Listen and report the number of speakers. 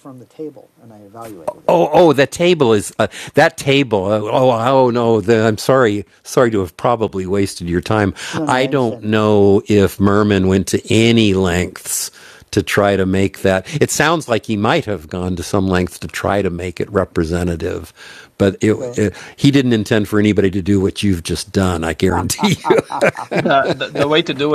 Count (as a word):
three